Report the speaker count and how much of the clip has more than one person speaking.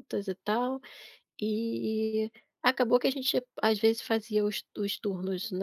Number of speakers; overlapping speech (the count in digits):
1, no overlap